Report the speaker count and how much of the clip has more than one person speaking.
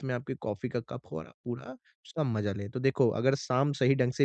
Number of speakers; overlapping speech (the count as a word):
one, no overlap